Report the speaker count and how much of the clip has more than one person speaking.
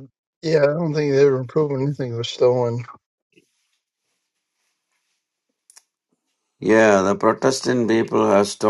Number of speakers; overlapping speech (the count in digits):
2, no overlap